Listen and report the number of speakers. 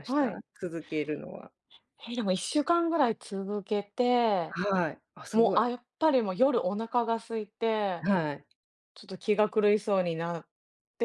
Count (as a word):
two